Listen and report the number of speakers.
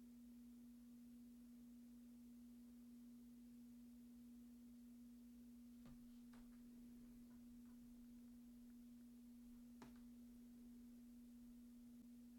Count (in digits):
0